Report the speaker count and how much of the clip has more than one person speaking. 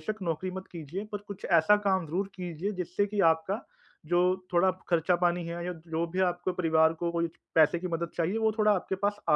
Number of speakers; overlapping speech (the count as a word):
one, no overlap